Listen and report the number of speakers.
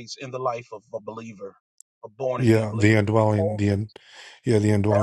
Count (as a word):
two